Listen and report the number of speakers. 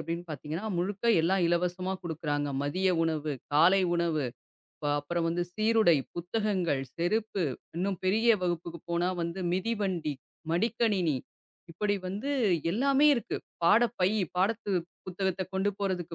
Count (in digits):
1